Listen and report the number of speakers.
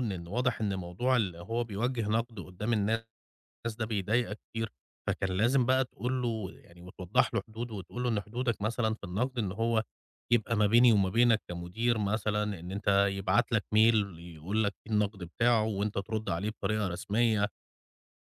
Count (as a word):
one